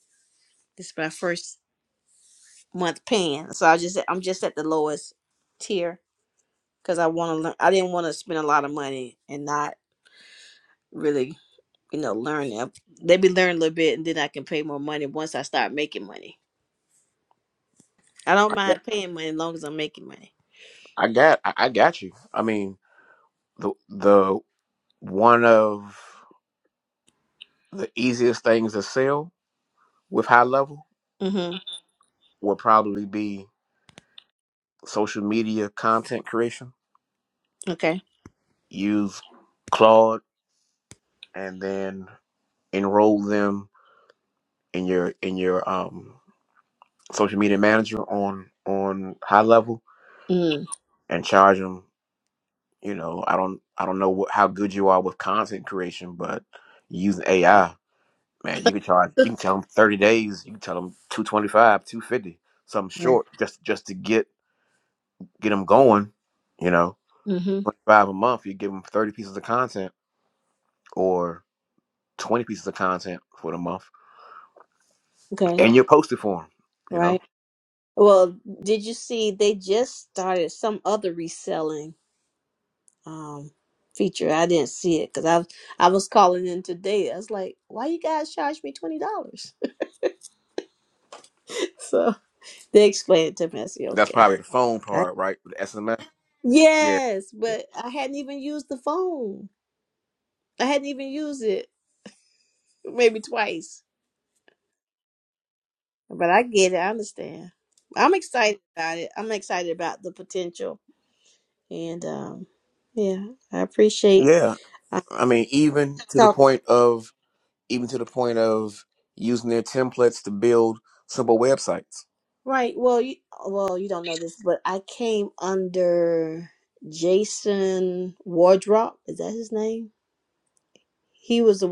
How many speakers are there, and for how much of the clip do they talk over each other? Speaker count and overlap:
two, about 1%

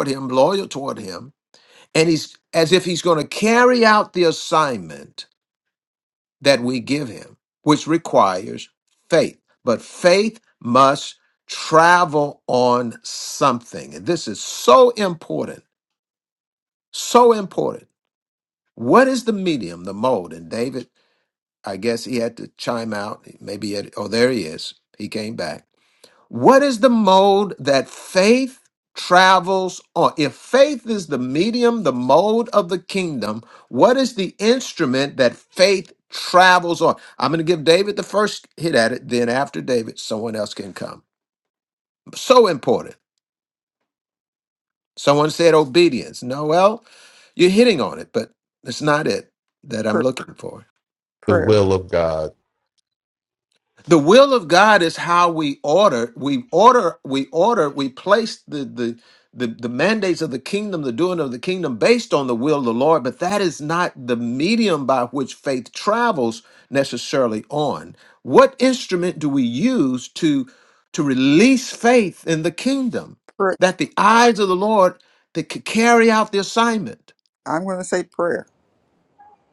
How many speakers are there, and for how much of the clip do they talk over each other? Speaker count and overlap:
three, about 1%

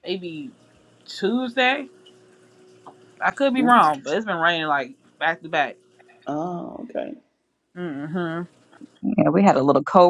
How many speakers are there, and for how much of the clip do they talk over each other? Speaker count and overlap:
three, about 3%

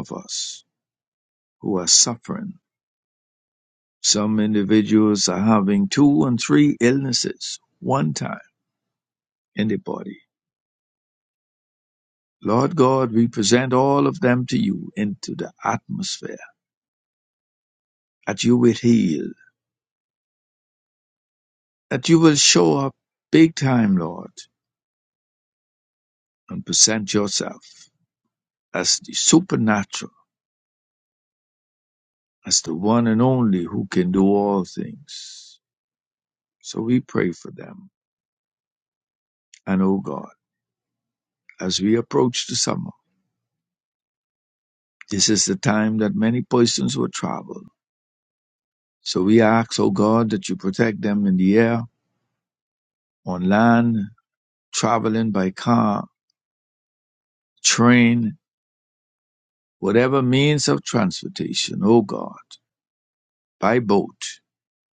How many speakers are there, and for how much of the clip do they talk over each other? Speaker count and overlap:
one, no overlap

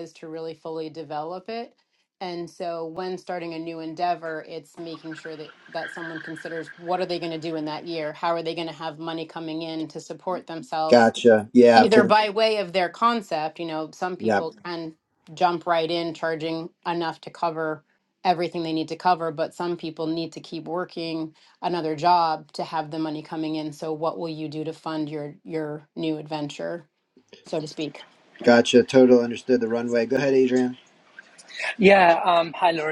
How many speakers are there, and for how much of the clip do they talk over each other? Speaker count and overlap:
three, about 2%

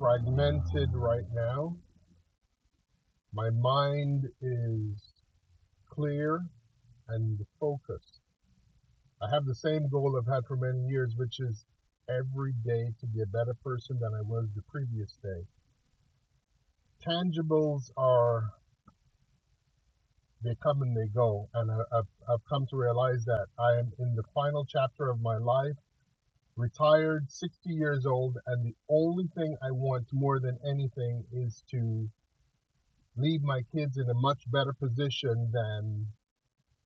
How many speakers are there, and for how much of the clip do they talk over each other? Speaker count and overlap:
one, no overlap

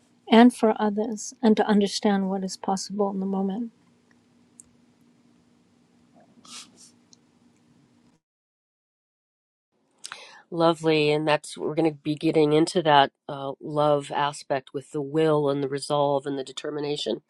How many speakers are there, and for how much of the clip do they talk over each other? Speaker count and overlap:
two, no overlap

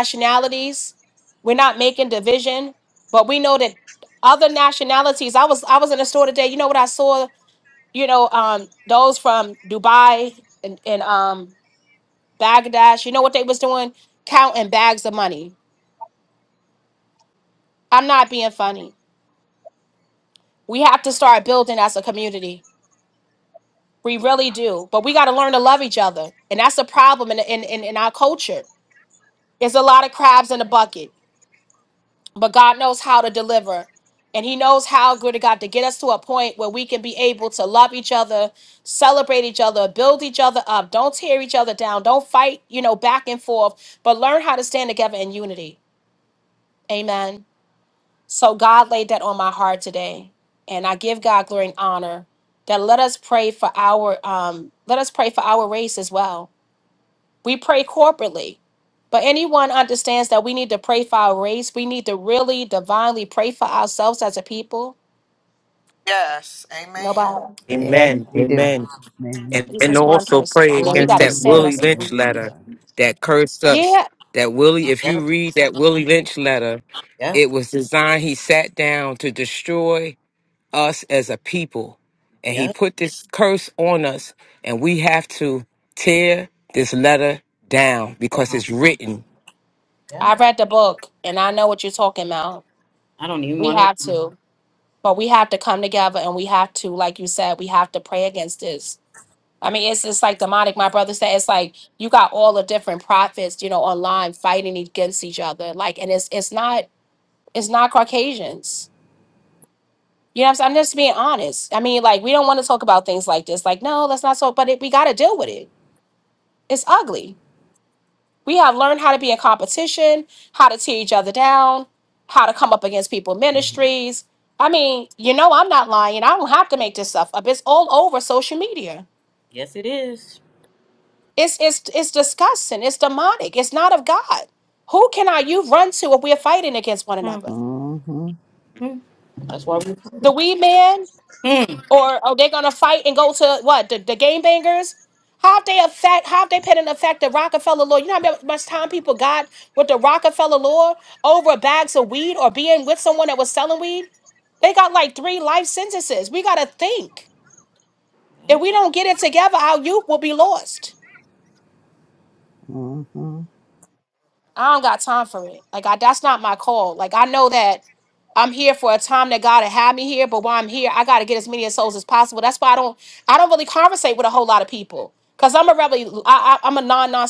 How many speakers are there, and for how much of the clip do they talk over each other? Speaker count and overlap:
five, about 3%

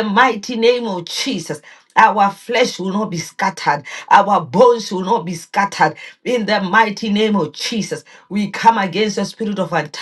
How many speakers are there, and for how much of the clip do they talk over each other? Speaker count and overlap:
one, no overlap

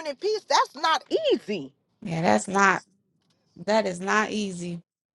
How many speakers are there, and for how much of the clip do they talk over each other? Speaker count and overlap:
two, no overlap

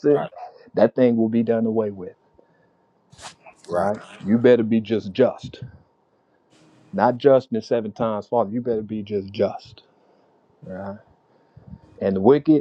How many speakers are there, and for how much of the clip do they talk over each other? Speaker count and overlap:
one, no overlap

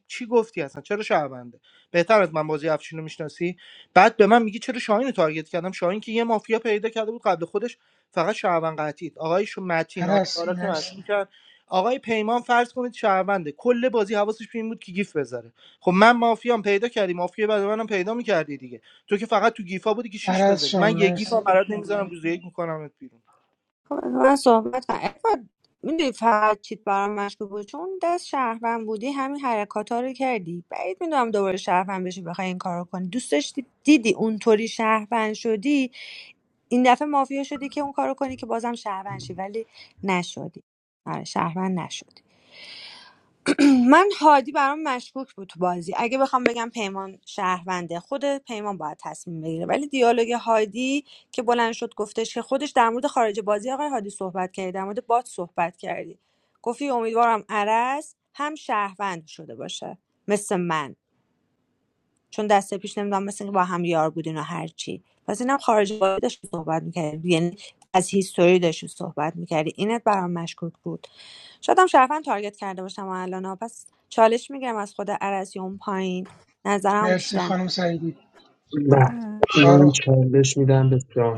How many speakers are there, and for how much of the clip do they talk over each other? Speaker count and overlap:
four, about 4%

